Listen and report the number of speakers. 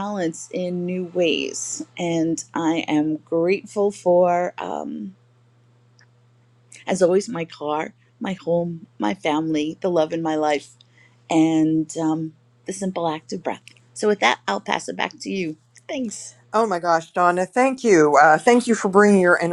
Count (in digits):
2